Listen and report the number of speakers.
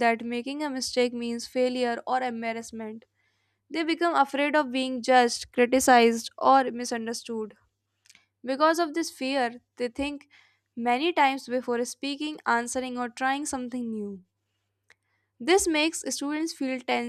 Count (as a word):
one